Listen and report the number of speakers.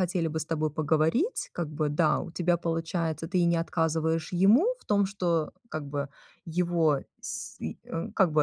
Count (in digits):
1